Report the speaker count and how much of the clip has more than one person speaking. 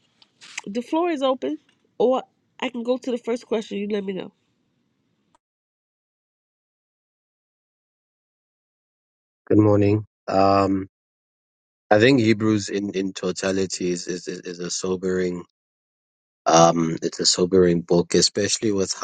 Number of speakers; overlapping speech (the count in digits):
2, no overlap